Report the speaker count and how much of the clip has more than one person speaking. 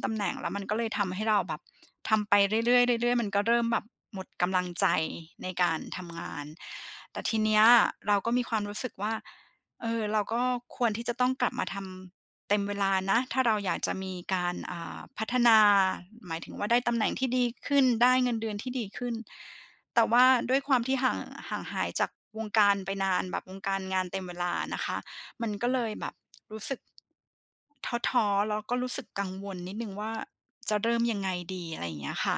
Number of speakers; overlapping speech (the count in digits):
1, no overlap